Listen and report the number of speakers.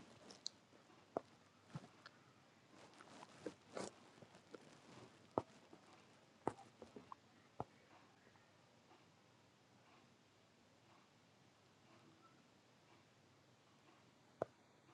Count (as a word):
zero